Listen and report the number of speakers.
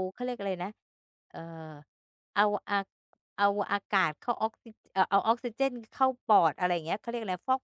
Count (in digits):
1